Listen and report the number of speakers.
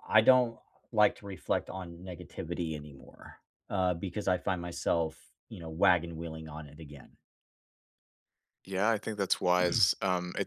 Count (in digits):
2